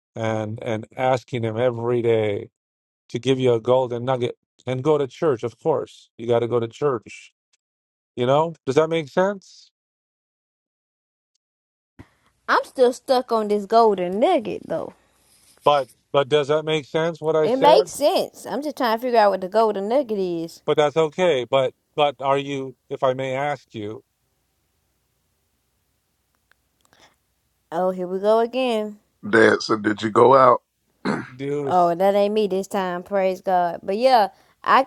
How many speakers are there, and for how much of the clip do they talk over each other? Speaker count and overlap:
three, about 1%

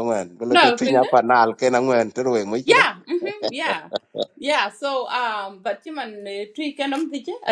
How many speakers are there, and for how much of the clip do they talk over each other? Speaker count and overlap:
two, about 11%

